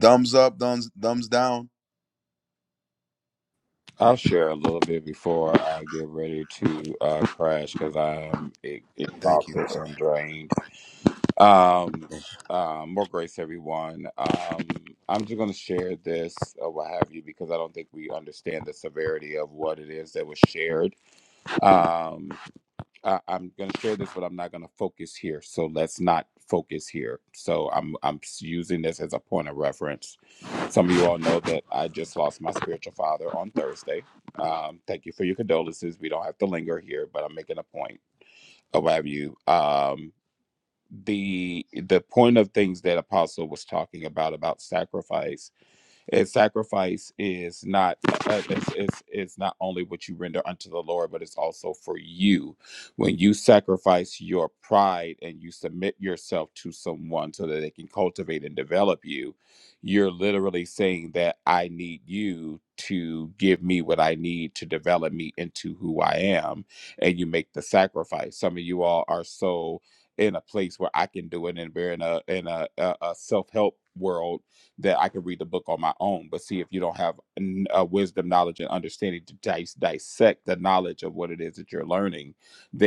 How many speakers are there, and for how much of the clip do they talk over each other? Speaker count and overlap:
2, under 1%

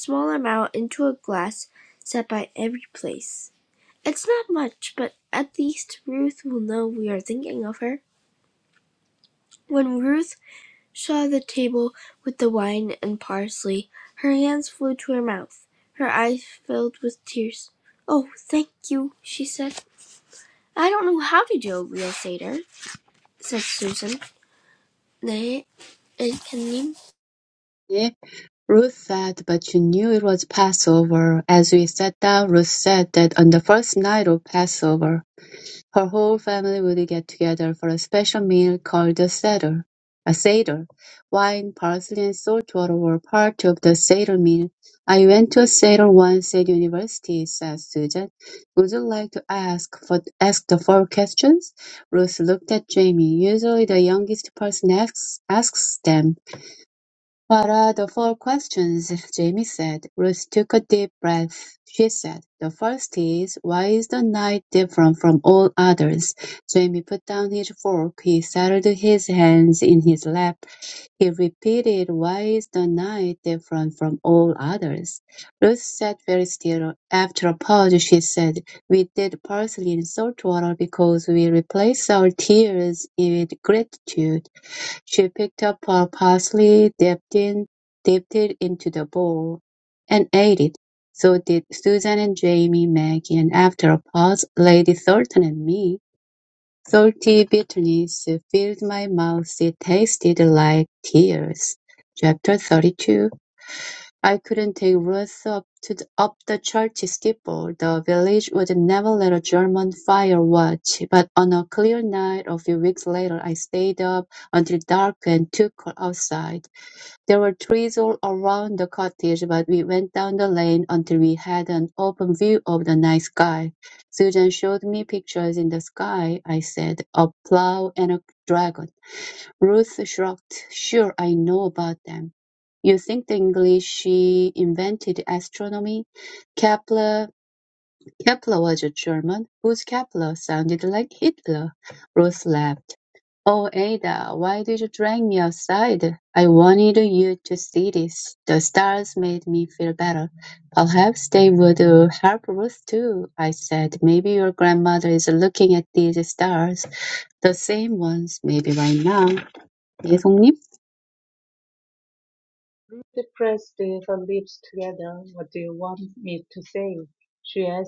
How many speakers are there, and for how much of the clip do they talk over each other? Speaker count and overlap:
3, no overlap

